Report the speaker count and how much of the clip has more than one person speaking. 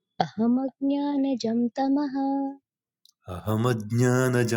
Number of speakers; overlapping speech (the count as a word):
two, no overlap